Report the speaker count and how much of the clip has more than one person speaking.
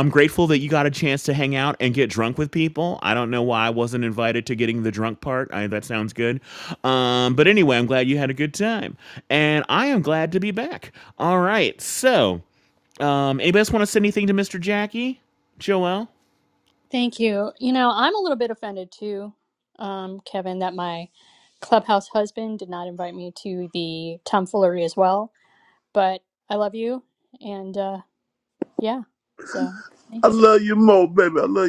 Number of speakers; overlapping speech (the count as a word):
three, no overlap